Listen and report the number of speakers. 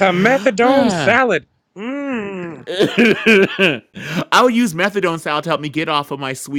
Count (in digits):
2